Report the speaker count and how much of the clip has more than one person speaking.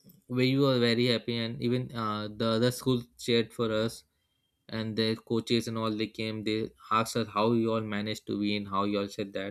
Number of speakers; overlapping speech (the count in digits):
1, no overlap